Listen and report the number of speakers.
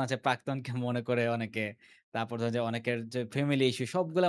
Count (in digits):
1